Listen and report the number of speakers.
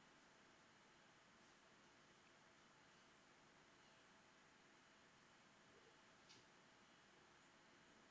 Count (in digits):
0